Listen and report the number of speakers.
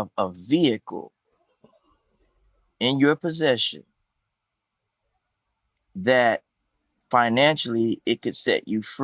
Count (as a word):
one